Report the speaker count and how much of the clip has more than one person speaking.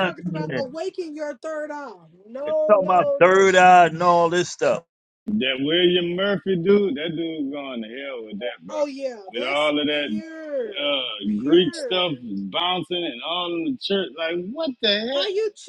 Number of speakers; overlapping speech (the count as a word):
three, about 21%